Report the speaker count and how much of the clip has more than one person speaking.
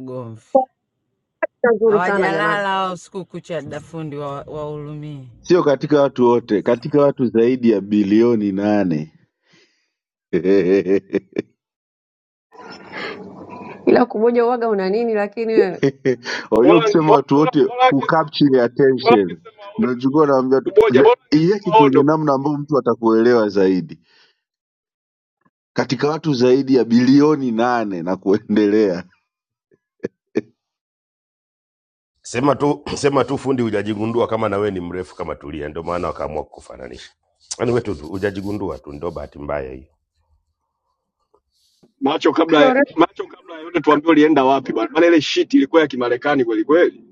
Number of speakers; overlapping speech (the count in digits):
5, about 8%